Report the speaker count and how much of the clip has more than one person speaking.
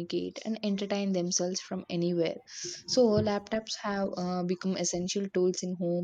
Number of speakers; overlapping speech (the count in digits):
1, no overlap